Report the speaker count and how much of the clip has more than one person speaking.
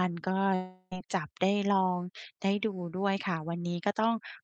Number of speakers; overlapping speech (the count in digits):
1, no overlap